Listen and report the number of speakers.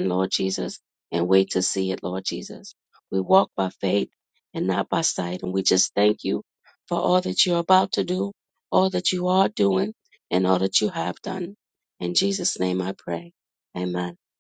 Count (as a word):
one